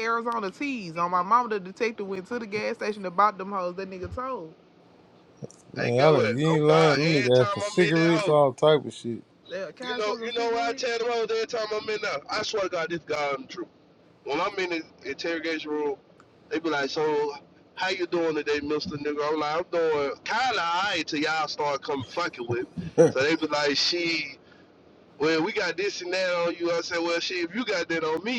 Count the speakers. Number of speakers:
3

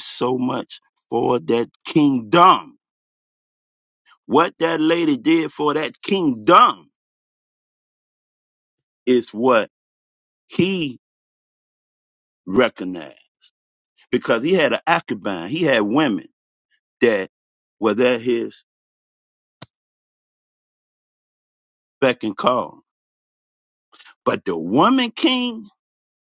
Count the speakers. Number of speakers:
1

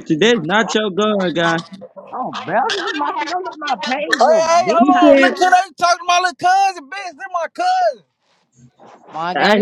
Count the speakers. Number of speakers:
3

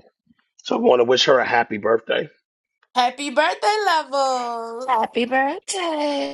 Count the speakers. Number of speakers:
3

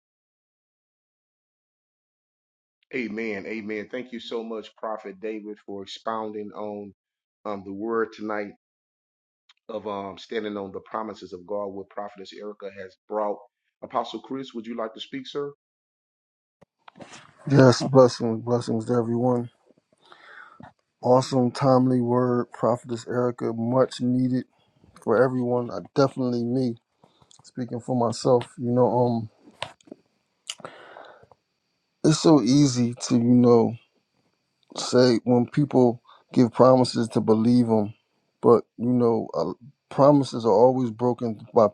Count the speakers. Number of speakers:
2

